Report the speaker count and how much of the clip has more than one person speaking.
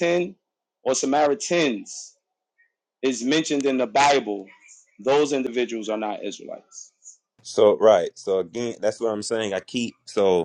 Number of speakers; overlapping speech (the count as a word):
two, no overlap